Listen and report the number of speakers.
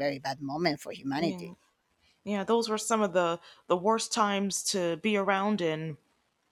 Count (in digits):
2